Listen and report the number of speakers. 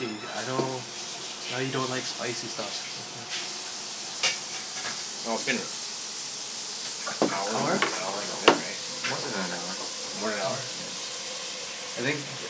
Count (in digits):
3